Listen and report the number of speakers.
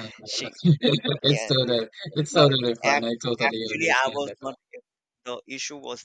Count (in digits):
2